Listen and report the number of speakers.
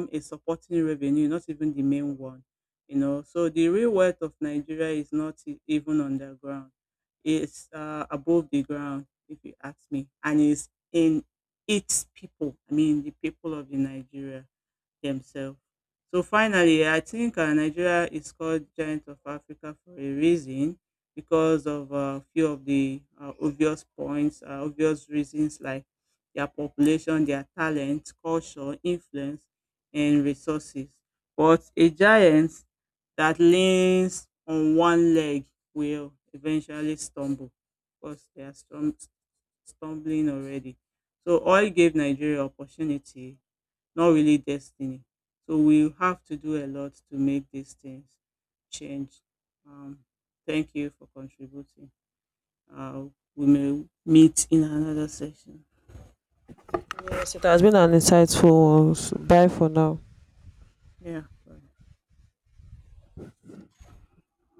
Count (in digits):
2